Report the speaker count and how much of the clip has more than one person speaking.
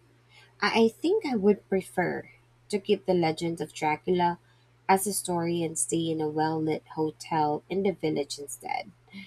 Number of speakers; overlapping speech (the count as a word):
one, no overlap